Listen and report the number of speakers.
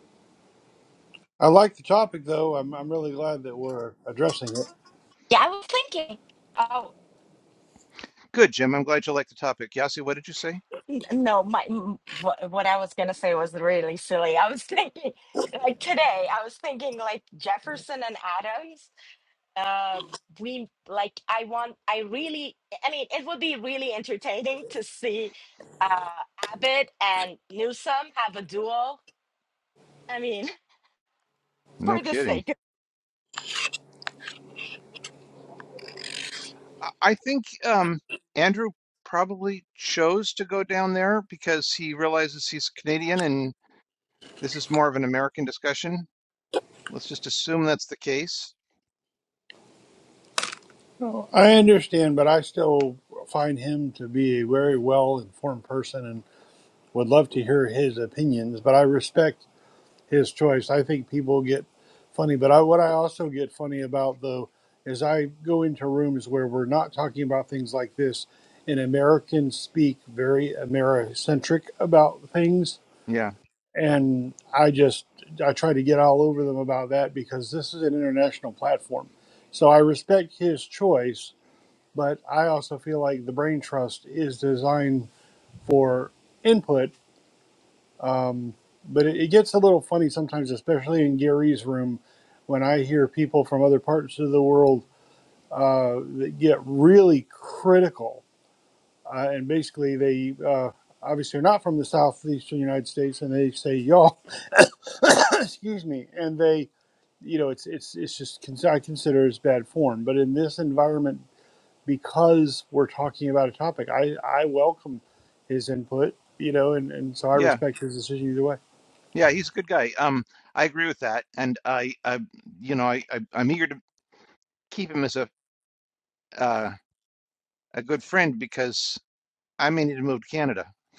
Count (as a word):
three